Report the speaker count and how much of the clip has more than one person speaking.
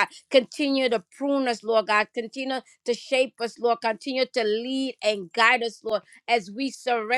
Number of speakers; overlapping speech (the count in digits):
1, no overlap